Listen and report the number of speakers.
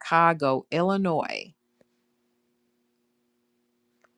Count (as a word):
one